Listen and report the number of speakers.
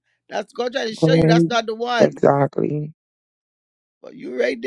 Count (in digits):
2